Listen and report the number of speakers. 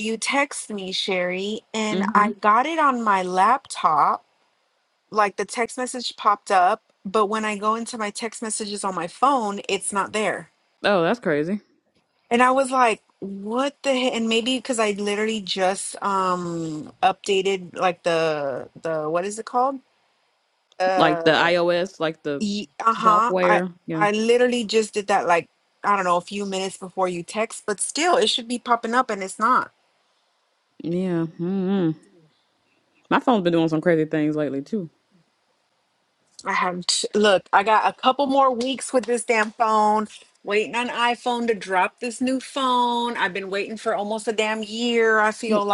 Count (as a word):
two